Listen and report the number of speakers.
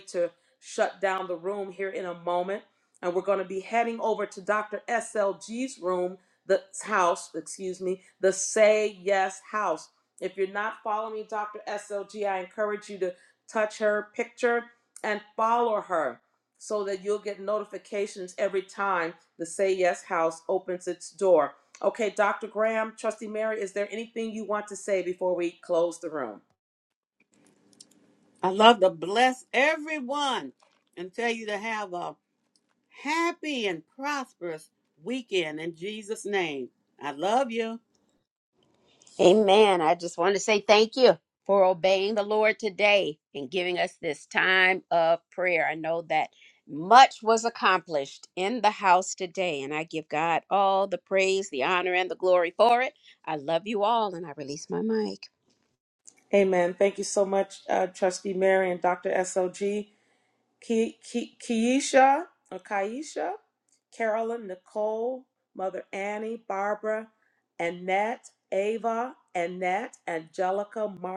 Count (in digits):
3